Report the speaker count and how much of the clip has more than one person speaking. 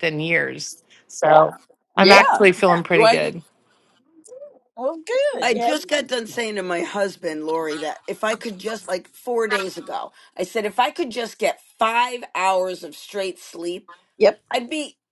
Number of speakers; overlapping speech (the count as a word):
three, about 11%